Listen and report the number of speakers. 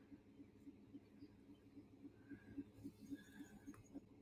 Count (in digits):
0